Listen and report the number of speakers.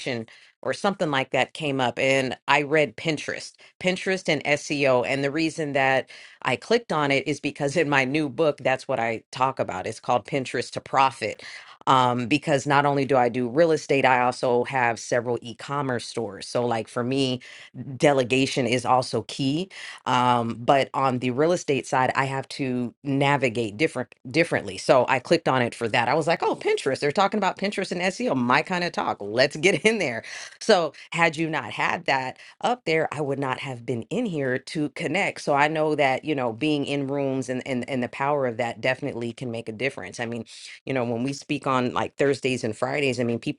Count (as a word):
one